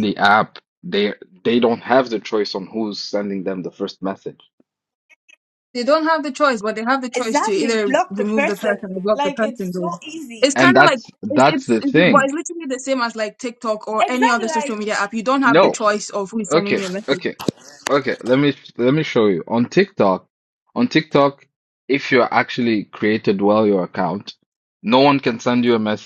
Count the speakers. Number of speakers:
three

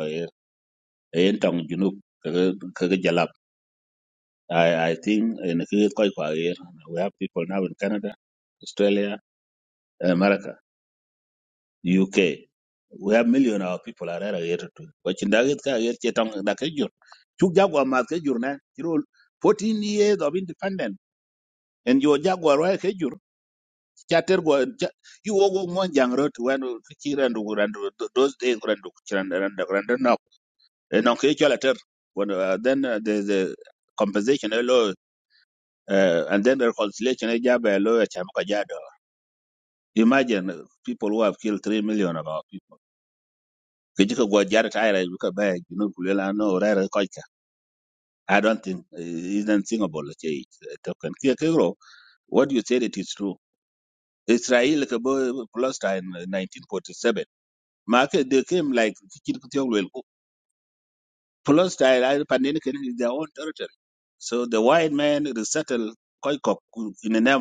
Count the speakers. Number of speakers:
one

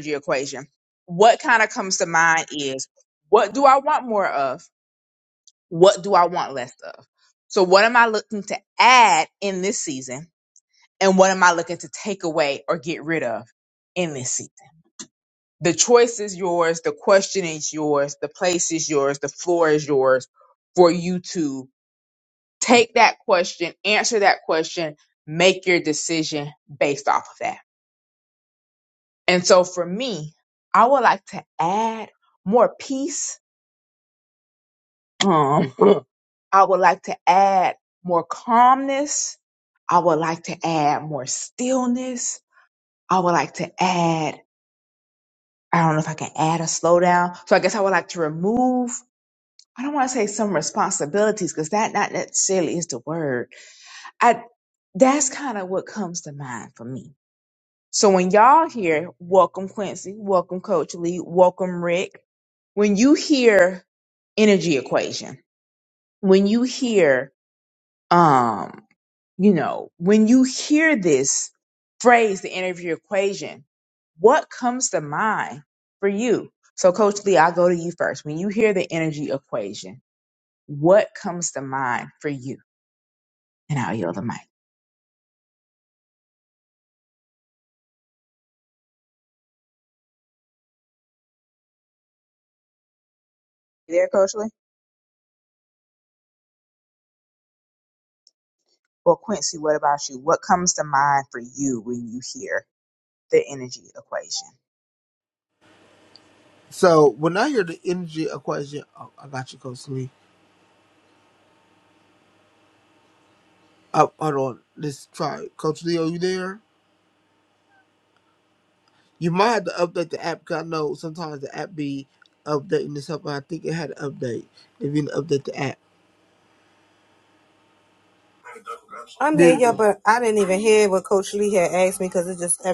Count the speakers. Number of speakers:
three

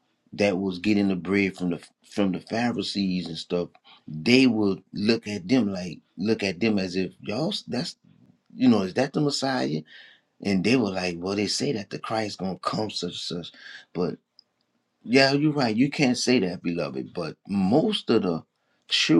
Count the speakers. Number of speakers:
one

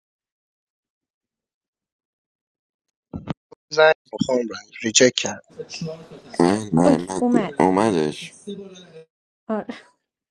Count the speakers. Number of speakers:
three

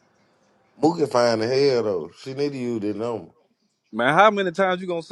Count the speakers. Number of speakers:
two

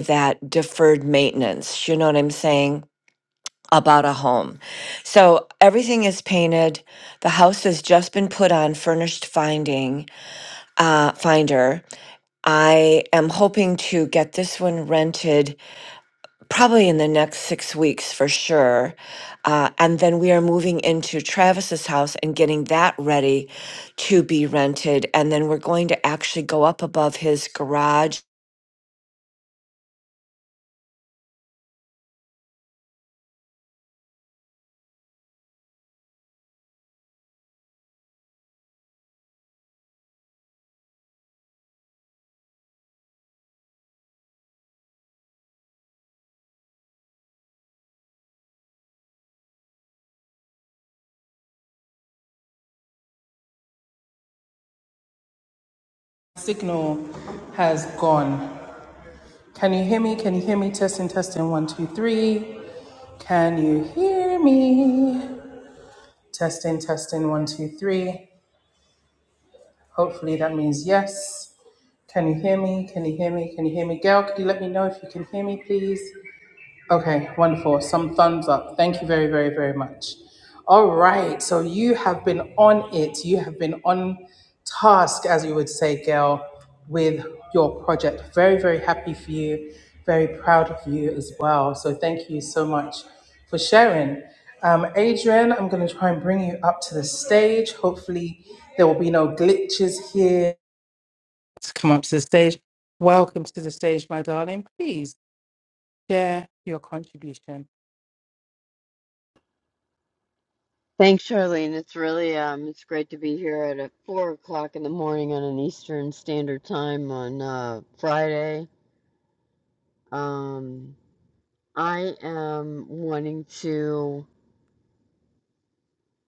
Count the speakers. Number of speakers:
three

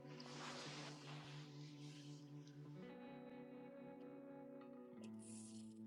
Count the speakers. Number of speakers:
zero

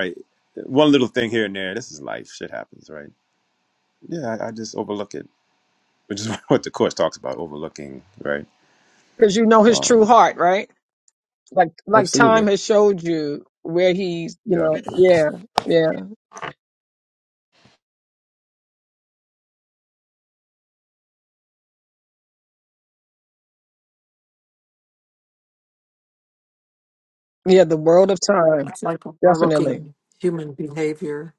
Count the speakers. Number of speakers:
three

